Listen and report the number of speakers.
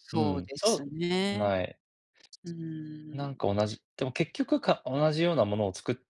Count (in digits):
2